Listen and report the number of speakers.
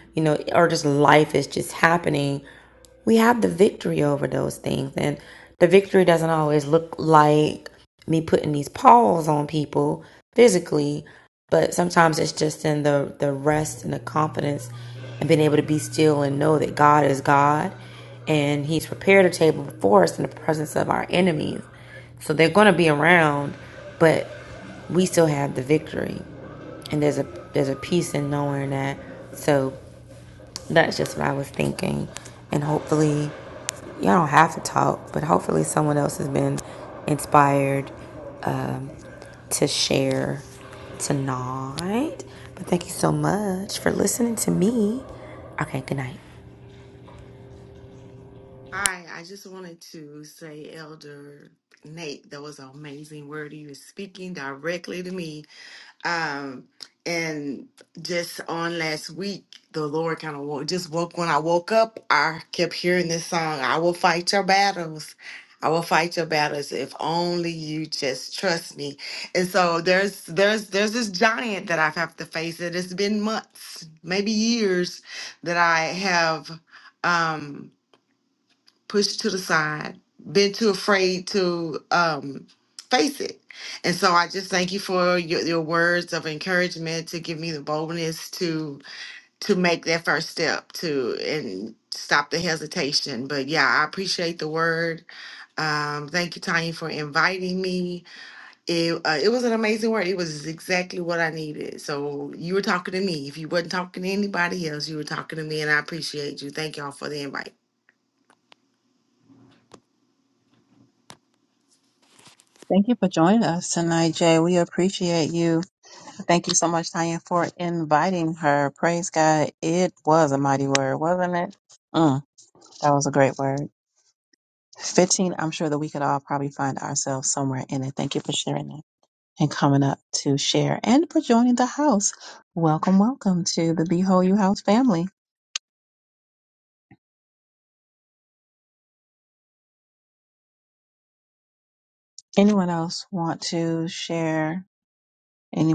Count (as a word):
three